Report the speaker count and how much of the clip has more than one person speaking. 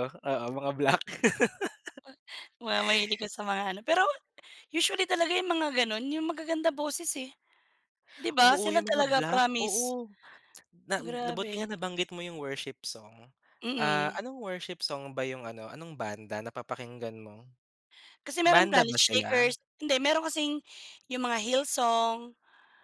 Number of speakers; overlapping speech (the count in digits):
2, about 14%